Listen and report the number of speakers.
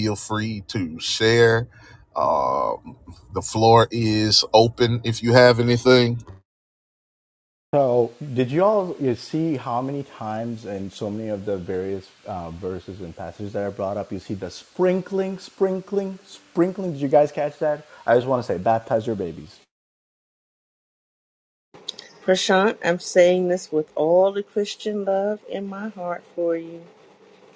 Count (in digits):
3